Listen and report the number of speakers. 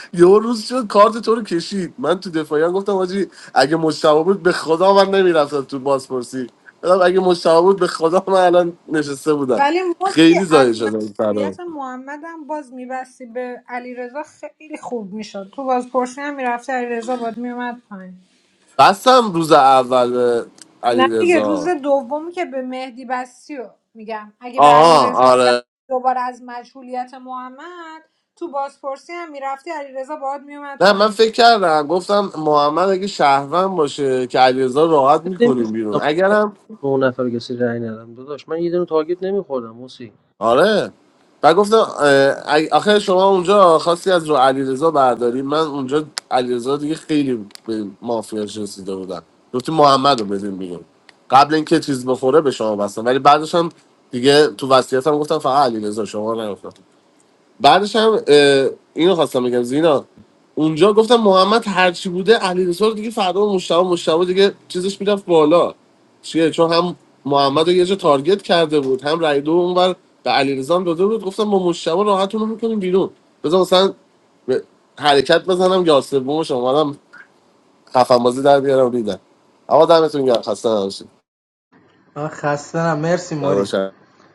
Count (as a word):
four